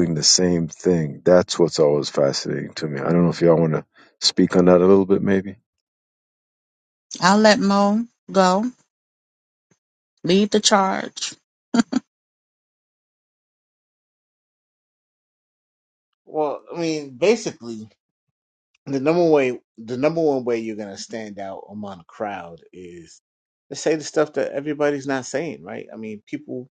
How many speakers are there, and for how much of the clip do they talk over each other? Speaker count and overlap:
3, no overlap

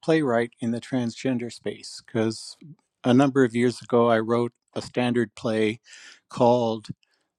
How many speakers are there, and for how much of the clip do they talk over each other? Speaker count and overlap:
1, no overlap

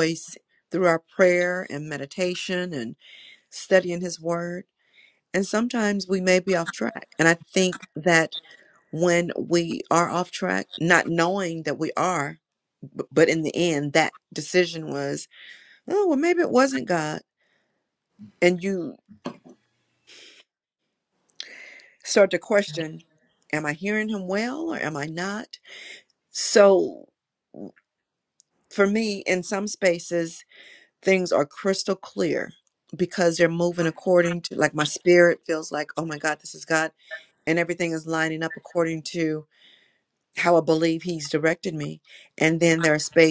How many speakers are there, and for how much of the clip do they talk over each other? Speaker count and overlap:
1, no overlap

